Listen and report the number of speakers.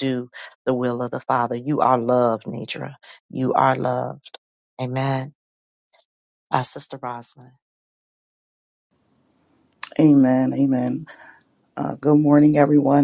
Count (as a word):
two